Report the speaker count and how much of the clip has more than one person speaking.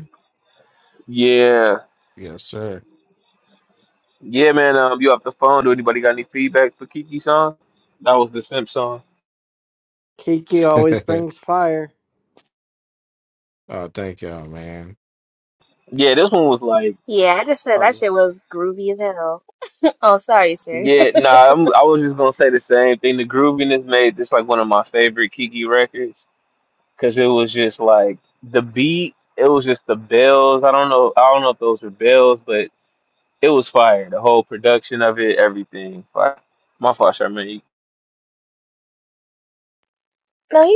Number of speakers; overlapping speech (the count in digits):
4, about 2%